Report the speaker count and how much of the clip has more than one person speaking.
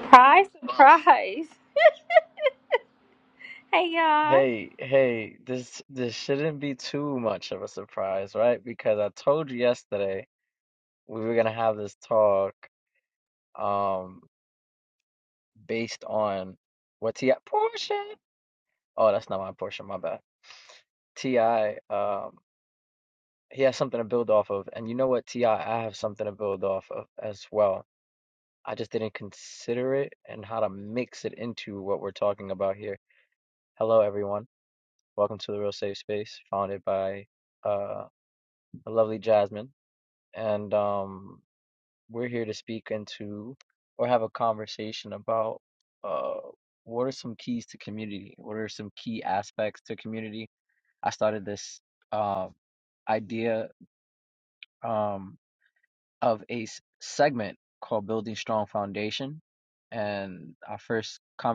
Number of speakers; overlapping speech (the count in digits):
2, under 1%